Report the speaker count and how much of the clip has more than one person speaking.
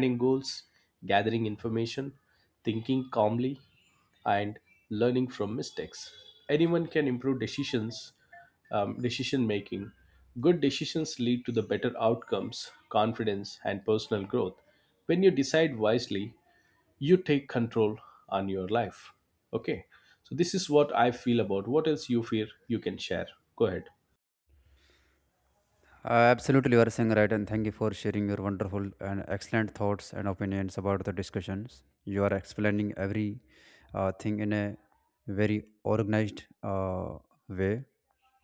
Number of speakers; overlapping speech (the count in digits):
2, no overlap